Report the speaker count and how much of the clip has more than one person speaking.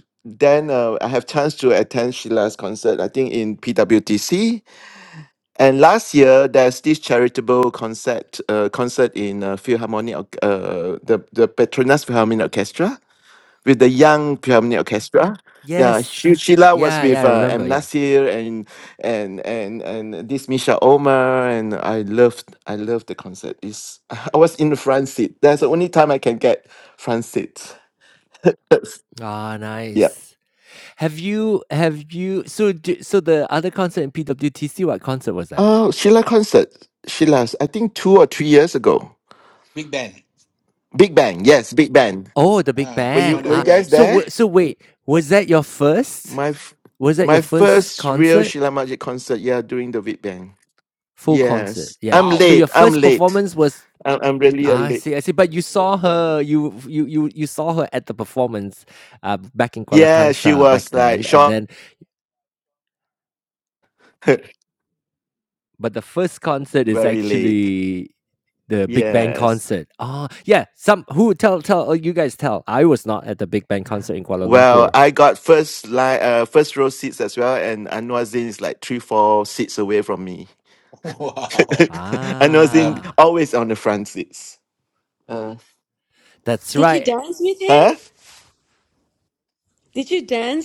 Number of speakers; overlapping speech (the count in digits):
4, about 13%